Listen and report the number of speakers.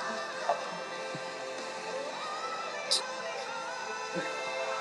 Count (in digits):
0